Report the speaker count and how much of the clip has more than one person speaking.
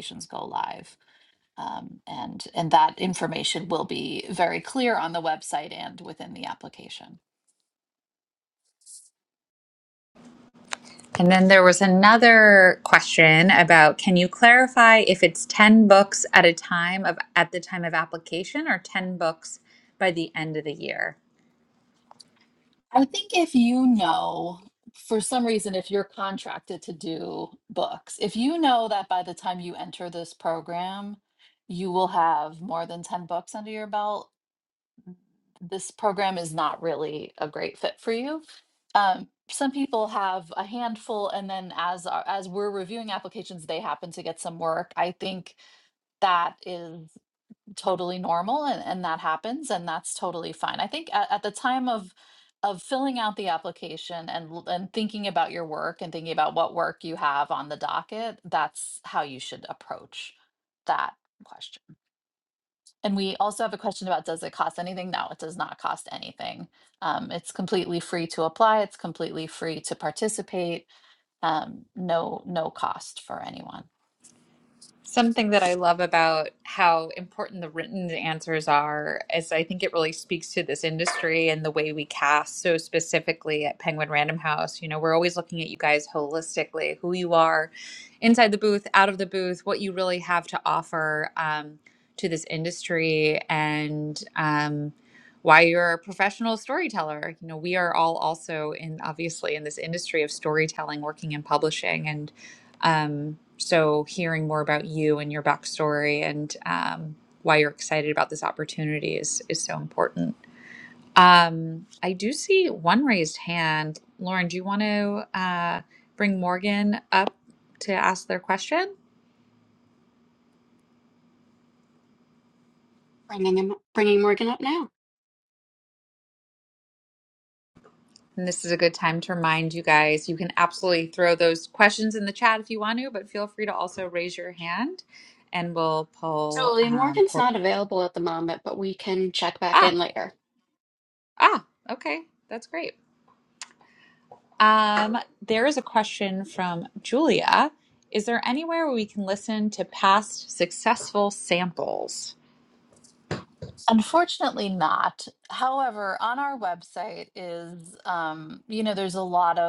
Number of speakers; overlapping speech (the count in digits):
3, about 1%